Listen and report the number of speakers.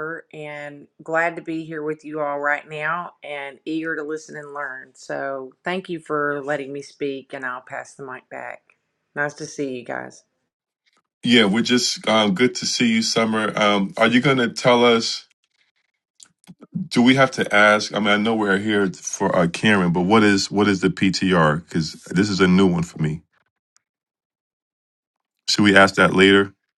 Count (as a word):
two